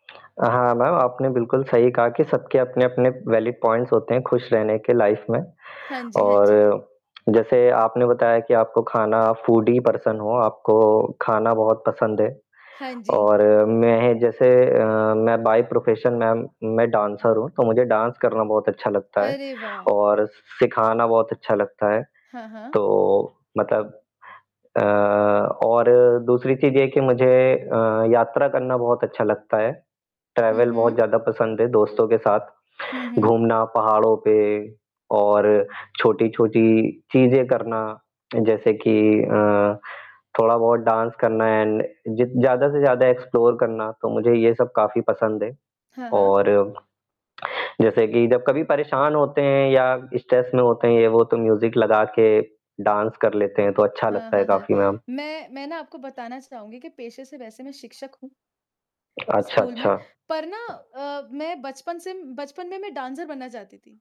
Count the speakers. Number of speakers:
two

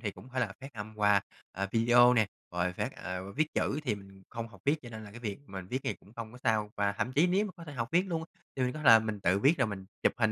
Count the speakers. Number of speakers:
one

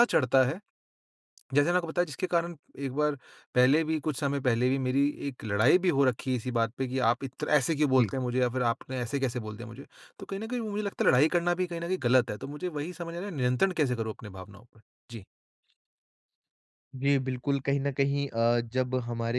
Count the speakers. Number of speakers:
two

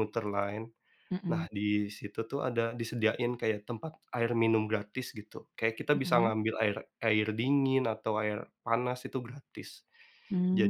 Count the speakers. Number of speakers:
two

